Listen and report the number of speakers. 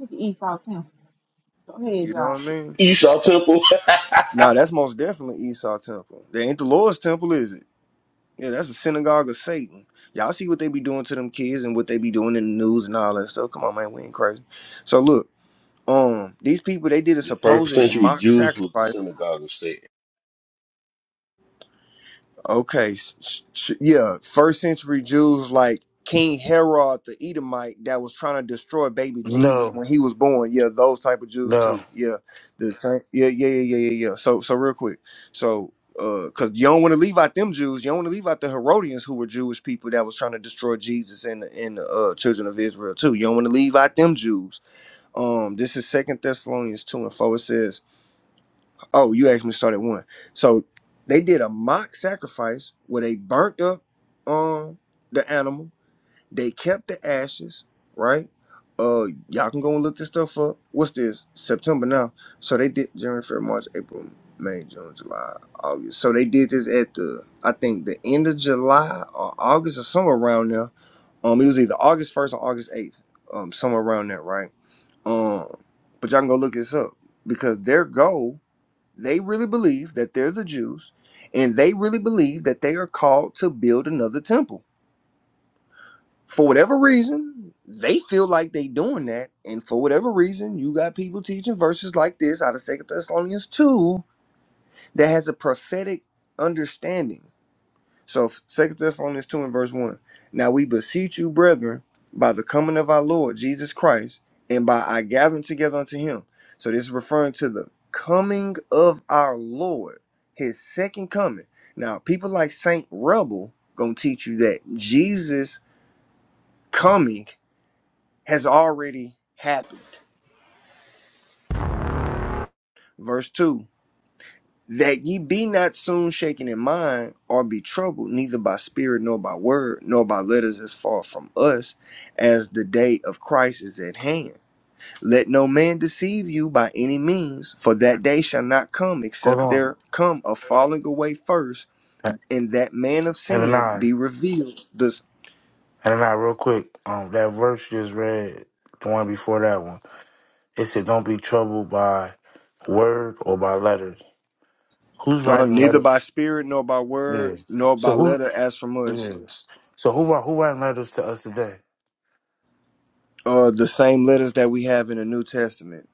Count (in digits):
4